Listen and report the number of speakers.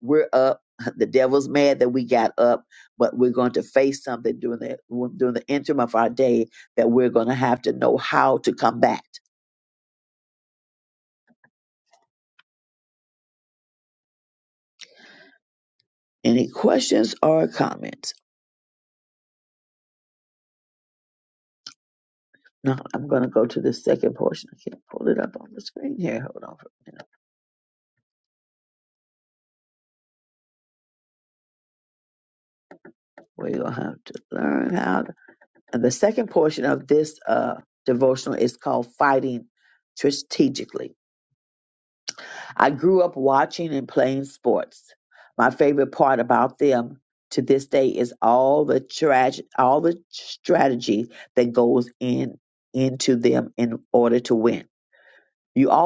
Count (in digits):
1